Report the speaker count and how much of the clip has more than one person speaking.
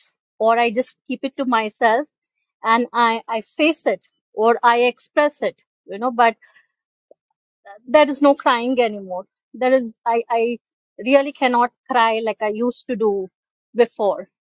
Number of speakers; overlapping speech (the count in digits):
1, no overlap